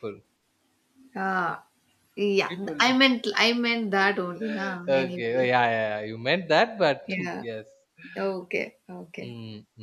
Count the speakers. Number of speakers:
2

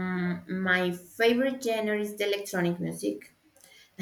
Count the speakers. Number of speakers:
1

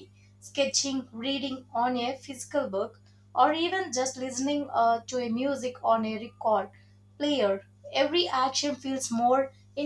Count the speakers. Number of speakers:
1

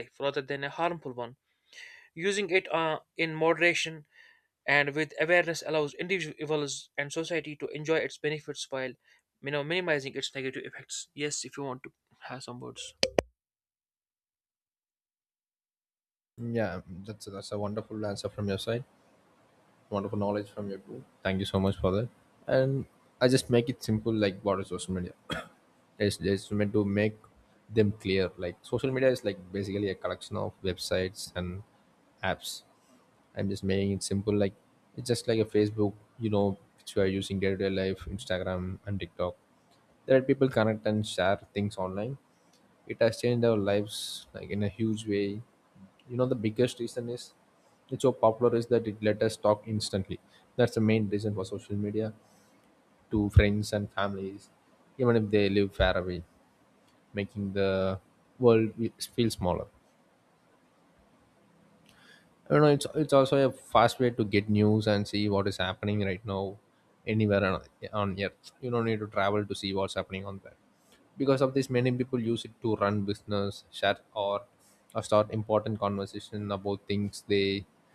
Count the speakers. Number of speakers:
2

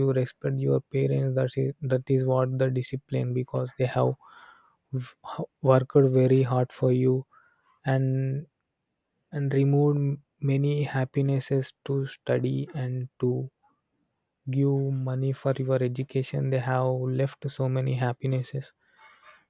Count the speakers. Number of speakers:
1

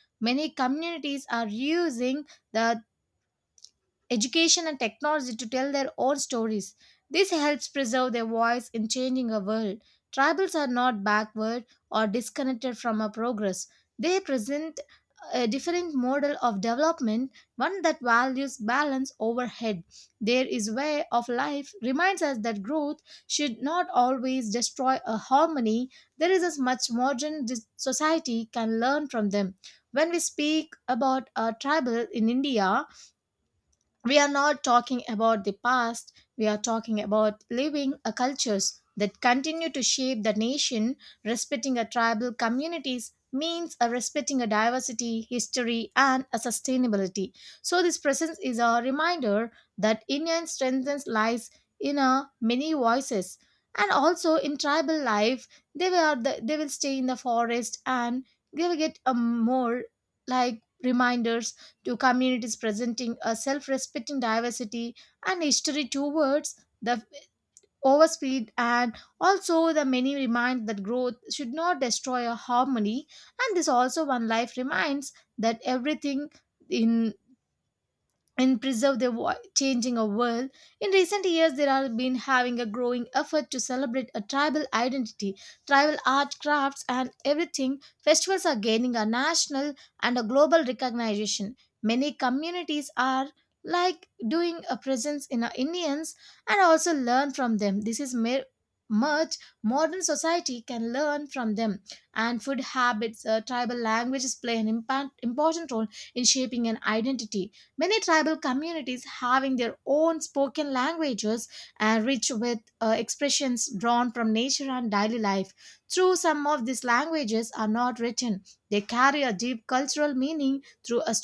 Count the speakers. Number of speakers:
1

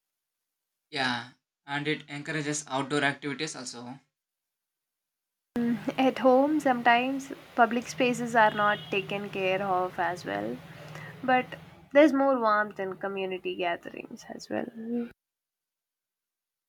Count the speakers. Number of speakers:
2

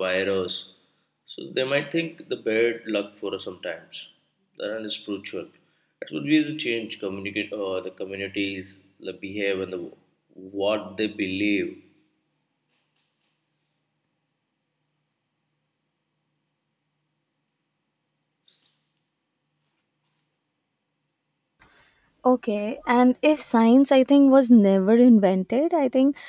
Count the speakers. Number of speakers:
2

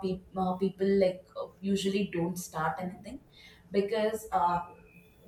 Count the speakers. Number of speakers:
1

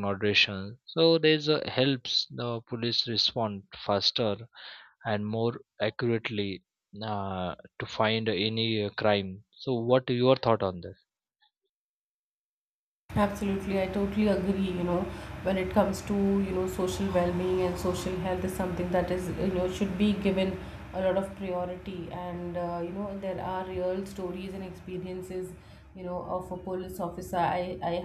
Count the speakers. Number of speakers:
2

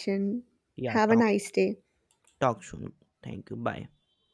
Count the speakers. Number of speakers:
2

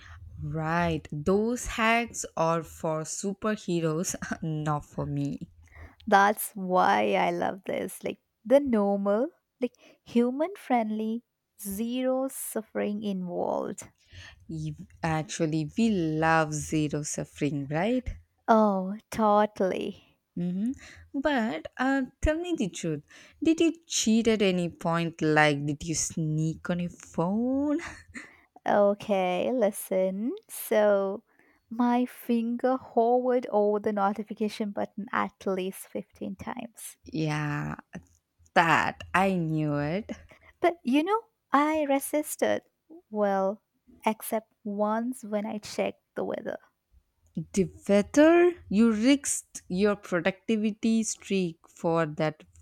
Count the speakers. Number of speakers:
2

